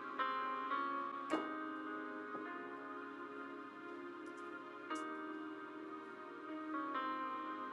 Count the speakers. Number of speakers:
0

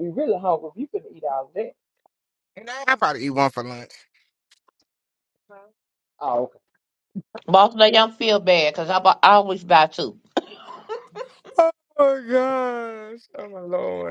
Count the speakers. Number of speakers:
3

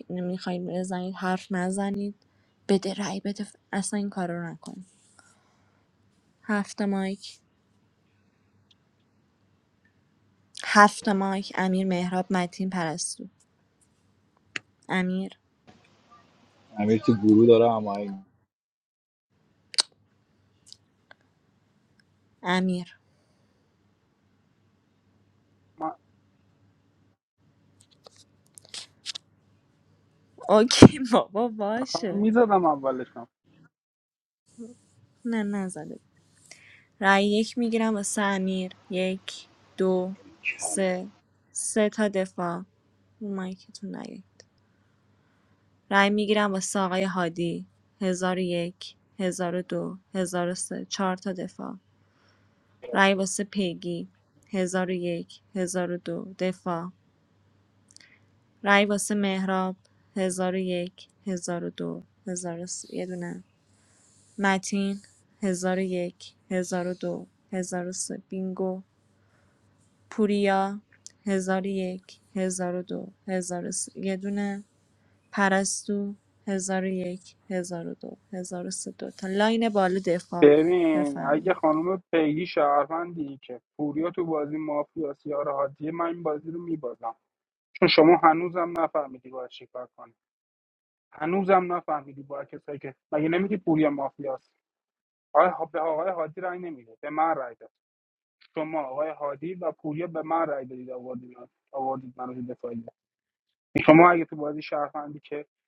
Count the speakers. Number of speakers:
3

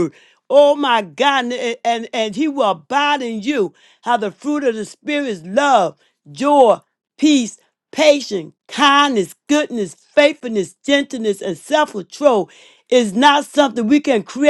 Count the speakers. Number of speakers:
1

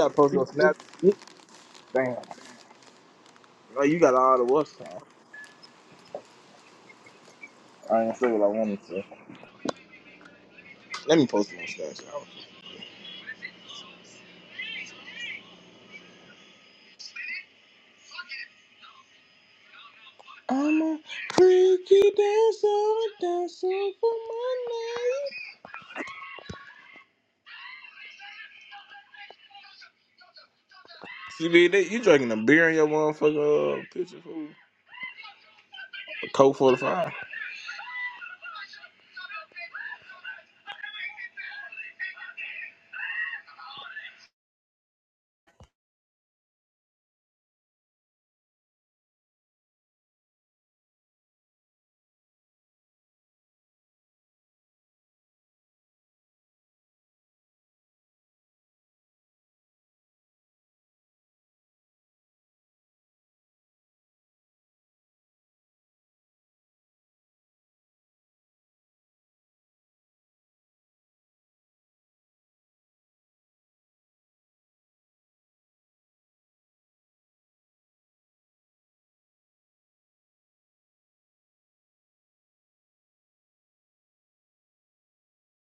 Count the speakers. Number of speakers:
1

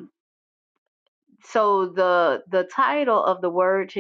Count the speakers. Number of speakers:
1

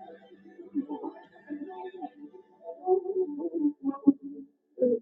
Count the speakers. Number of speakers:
0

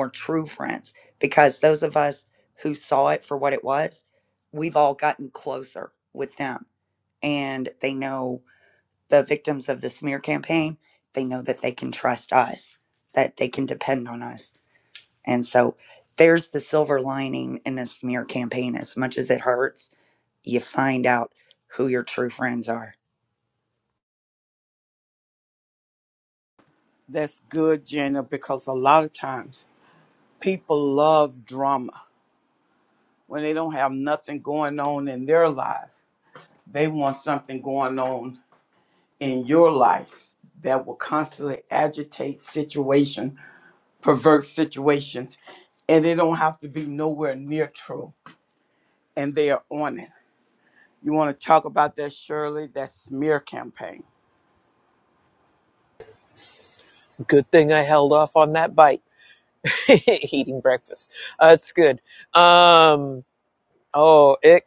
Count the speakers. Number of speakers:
3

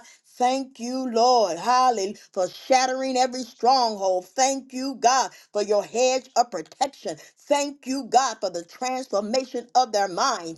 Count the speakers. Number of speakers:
1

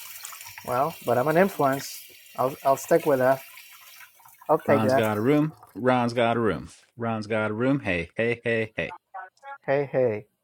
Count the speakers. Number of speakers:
2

